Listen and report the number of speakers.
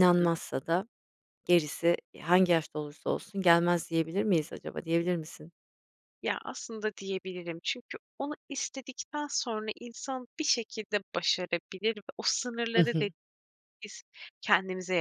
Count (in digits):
2